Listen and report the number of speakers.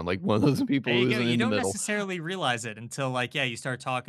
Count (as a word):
two